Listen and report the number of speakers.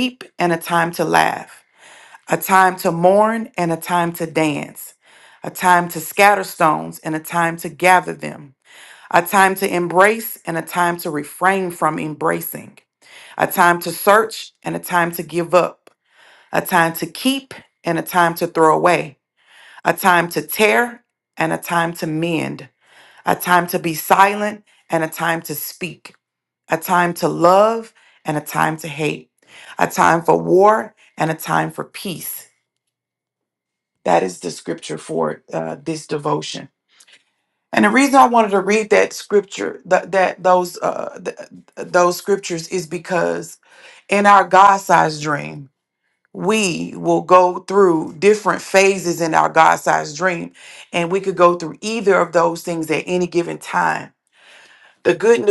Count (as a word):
one